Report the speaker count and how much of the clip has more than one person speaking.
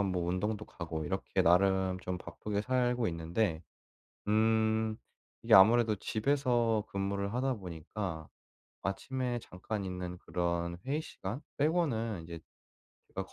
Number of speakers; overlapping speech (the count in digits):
1, no overlap